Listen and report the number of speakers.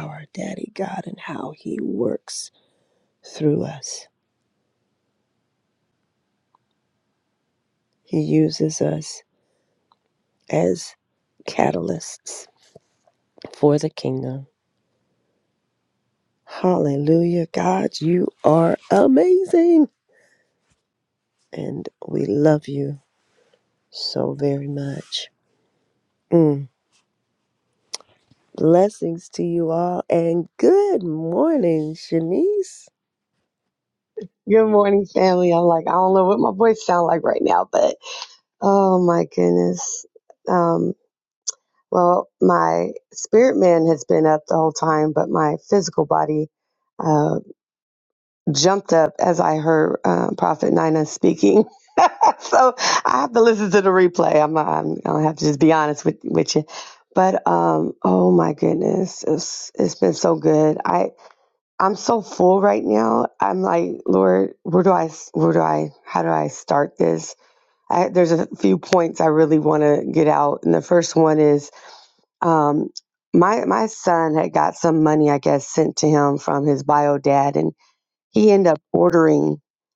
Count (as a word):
two